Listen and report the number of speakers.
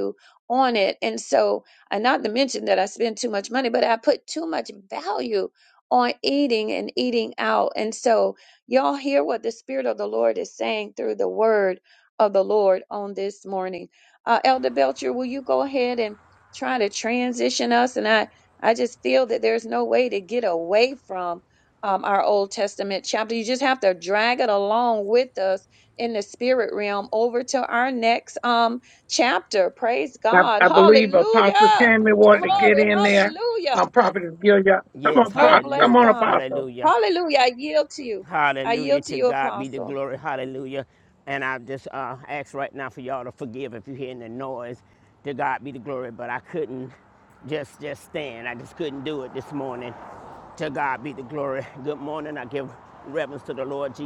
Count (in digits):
3